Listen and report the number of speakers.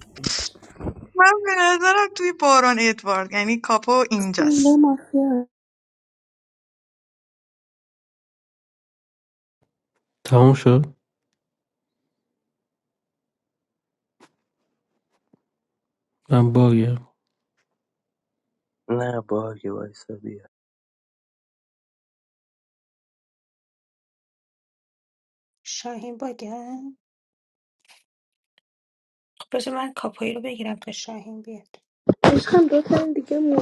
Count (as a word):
five